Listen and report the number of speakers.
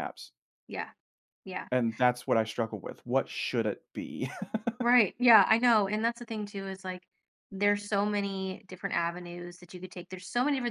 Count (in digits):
2